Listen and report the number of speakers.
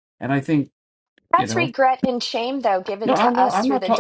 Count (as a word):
two